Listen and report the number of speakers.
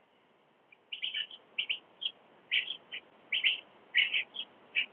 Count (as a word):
zero